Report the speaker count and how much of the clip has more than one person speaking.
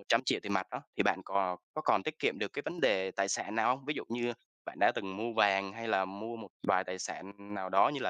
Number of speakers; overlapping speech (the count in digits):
1, no overlap